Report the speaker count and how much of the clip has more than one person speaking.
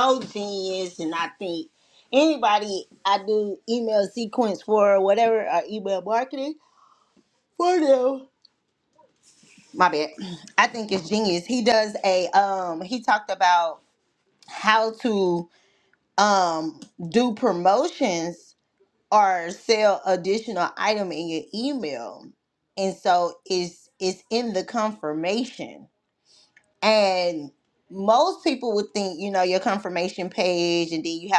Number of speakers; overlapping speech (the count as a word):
one, no overlap